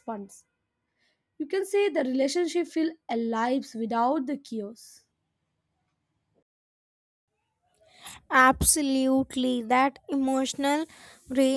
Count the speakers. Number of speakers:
two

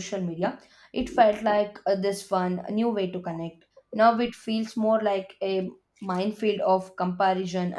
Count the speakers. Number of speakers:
one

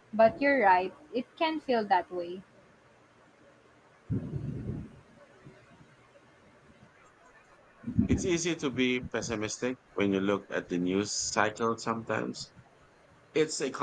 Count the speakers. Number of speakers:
two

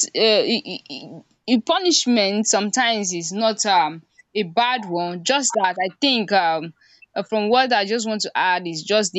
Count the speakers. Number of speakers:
one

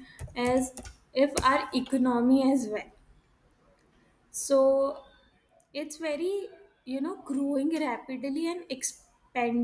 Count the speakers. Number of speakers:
one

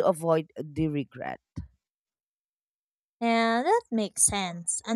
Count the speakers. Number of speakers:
two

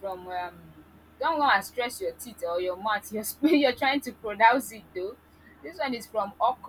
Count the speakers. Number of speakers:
one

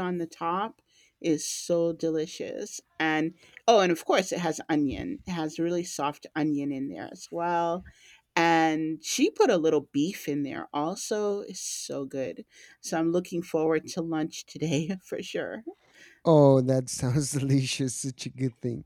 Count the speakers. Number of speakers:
two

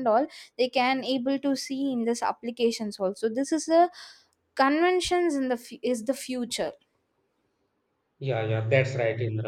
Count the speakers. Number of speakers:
two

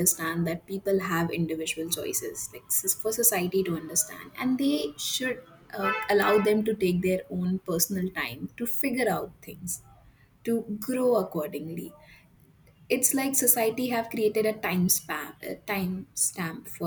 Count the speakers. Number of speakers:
one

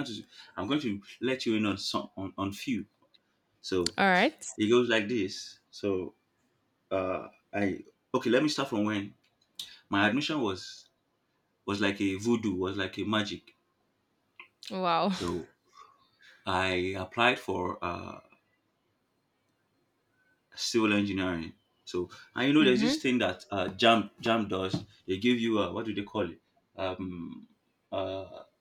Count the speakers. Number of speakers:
two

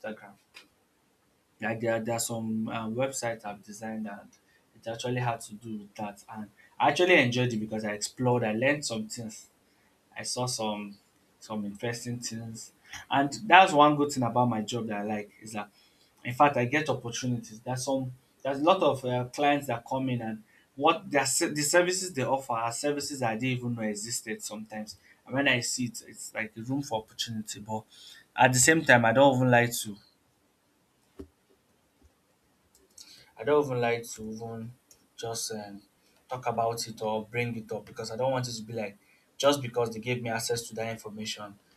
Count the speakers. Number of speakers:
one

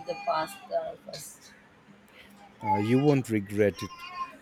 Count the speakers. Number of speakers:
two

